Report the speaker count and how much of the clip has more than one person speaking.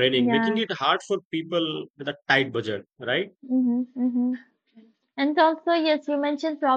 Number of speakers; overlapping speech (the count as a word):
two, about 7%